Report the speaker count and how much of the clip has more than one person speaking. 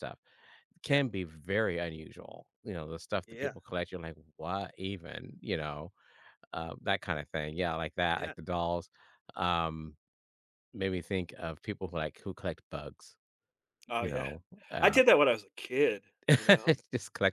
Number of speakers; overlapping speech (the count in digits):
2, about 6%